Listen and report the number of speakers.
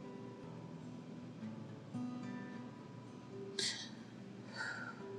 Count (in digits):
0